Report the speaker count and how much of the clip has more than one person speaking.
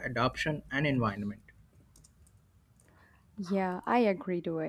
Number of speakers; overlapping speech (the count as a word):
two, no overlap